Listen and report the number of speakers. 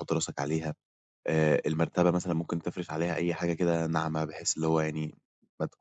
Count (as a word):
one